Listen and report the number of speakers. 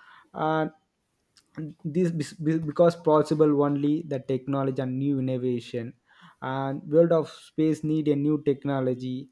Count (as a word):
one